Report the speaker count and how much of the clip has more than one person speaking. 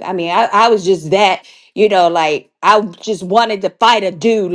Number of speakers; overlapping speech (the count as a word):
one, no overlap